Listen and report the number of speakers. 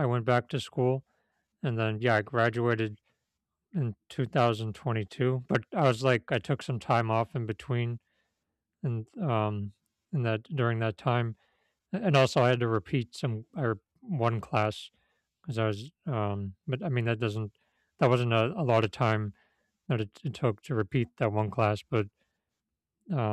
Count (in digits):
1